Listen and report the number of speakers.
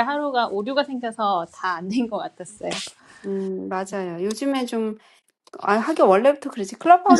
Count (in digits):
2